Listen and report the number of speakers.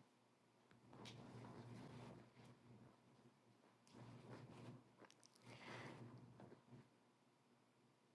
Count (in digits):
0